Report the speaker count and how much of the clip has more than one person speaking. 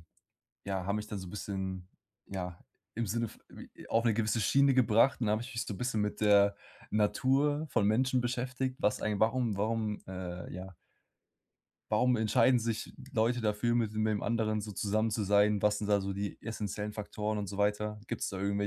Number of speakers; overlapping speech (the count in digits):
1, no overlap